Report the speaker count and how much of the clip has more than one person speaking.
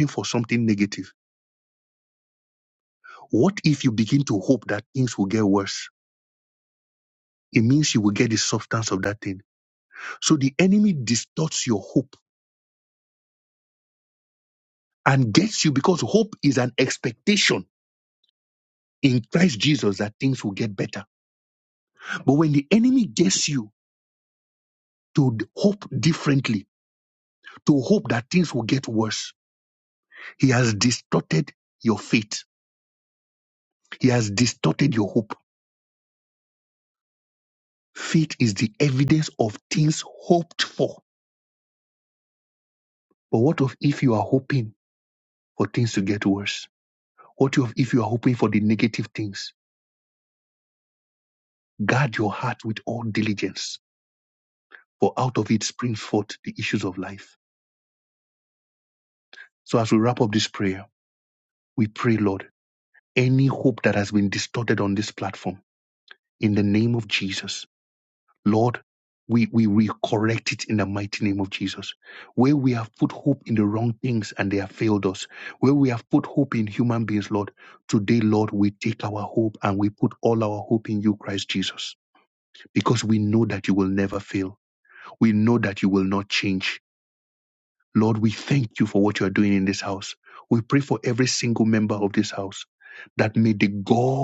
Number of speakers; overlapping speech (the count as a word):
one, no overlap